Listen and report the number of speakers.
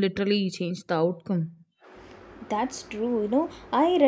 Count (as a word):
two